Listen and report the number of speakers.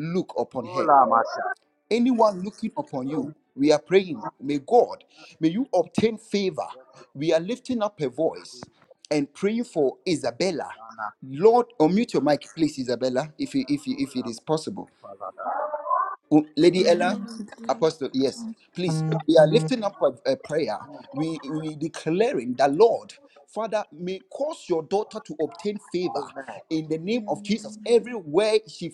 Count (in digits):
3